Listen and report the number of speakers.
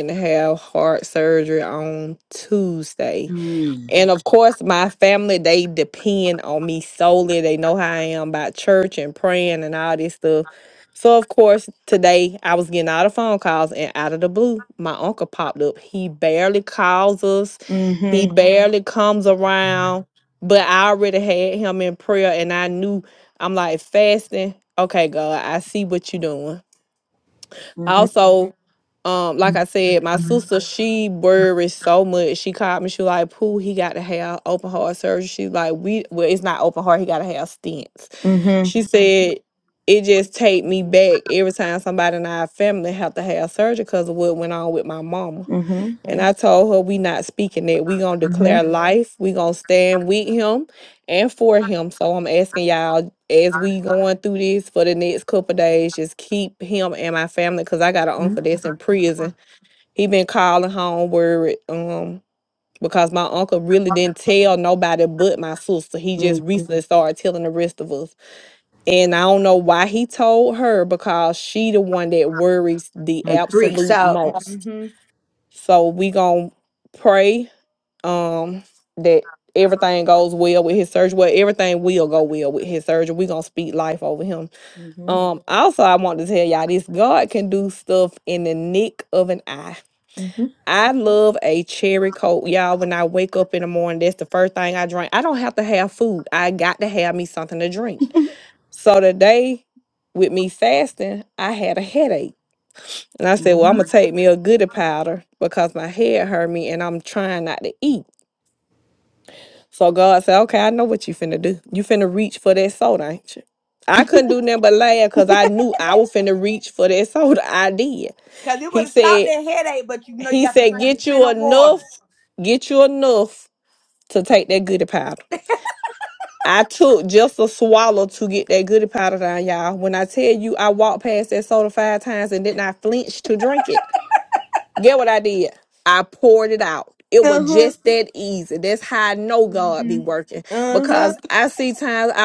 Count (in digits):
2